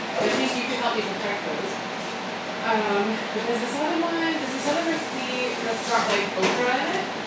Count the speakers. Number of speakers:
1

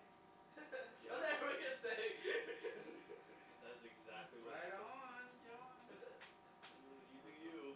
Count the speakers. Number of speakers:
3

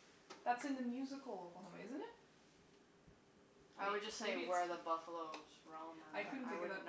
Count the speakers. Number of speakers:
2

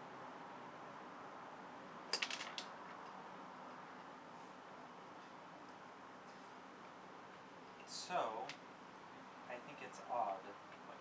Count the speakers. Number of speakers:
1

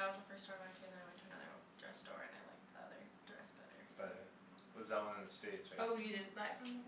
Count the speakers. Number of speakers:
3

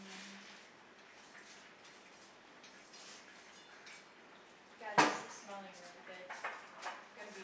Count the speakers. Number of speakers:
1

